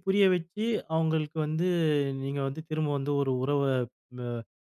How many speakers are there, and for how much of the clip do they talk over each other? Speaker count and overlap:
1, no overlap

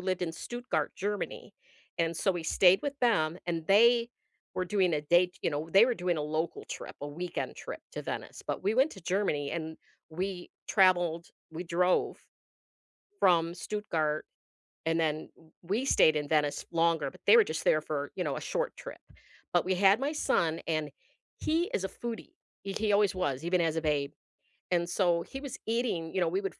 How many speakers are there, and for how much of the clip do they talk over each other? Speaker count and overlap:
1, no overlap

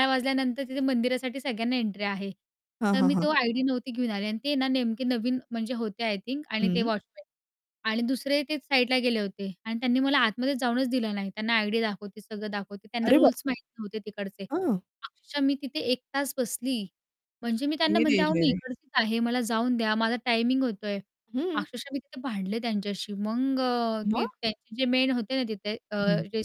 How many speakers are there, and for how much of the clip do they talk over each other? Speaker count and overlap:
2, about 9%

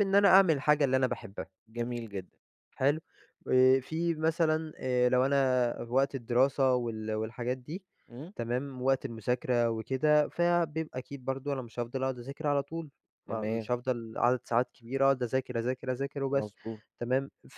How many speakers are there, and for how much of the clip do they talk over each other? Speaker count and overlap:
2, about 3%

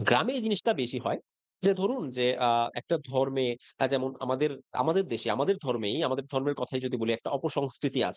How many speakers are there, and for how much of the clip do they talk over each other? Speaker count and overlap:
1, no overlap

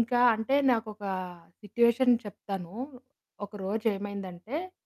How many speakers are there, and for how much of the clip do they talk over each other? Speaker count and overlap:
1, no overlap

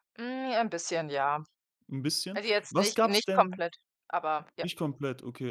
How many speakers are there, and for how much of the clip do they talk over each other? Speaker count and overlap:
2, about 23%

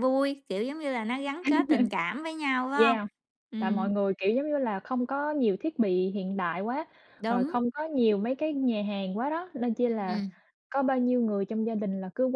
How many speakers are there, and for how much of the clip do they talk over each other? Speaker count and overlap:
2, about 10%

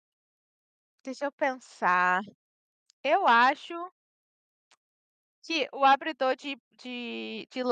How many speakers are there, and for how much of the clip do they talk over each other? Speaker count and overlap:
1, no overlap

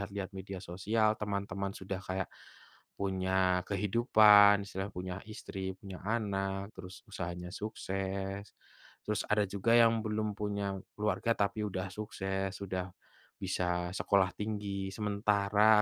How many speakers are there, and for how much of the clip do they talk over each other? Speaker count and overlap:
1, no overlap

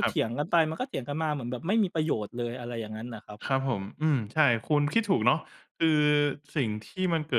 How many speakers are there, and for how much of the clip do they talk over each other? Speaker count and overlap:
2, about 2%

